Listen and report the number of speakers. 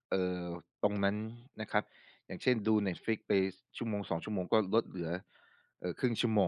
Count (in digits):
1